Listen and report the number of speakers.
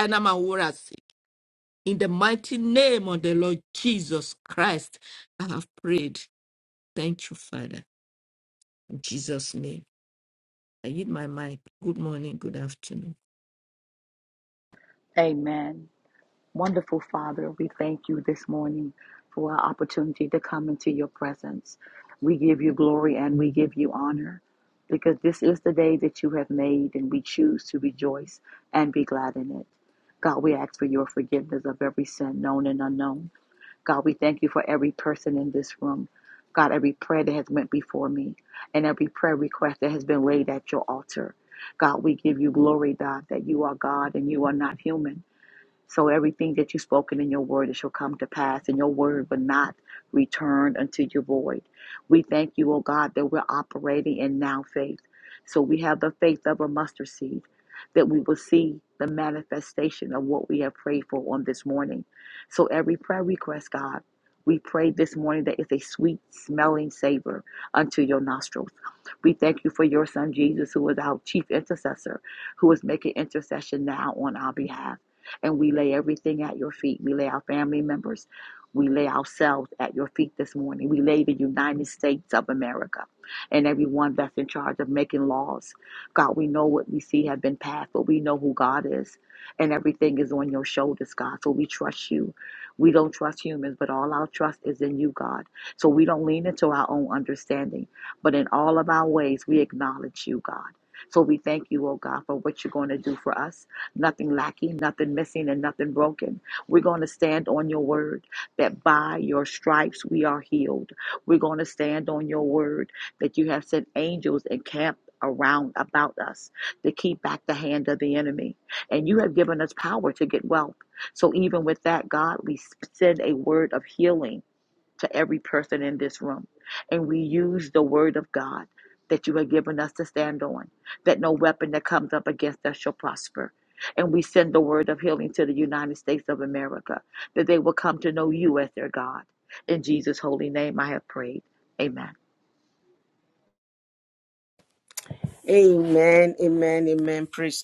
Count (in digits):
3